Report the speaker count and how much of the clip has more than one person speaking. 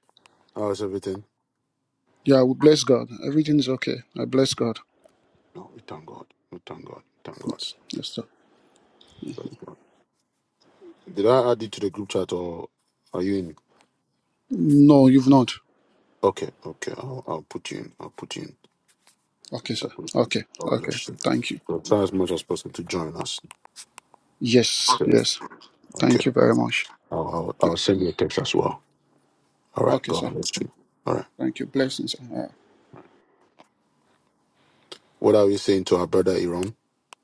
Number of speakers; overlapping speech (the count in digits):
2, about 7%